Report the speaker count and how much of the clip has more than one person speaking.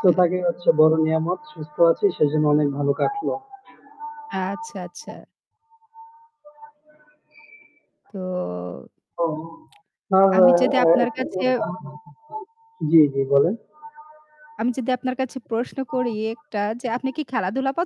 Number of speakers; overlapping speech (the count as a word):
two, about 2%